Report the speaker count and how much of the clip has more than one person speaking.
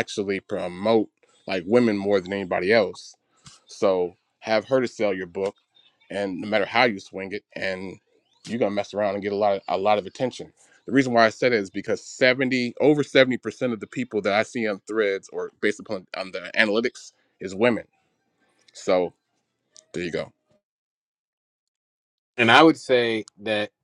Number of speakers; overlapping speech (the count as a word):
two, no overlap